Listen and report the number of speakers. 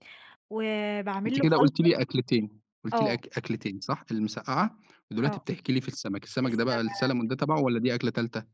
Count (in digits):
2